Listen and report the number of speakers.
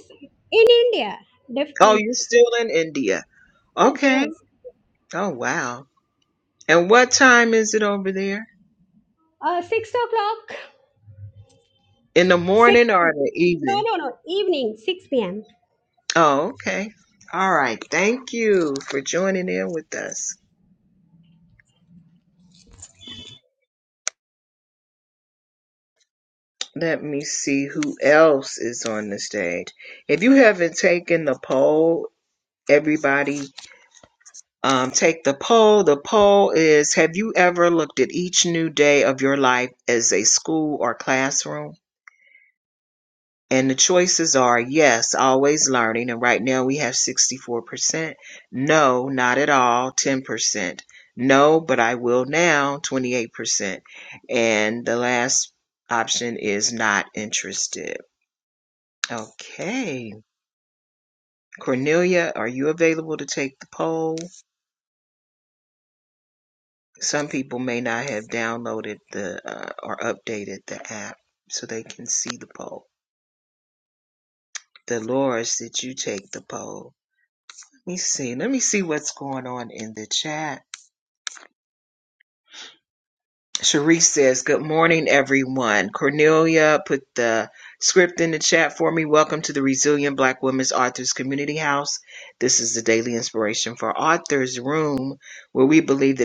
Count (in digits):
2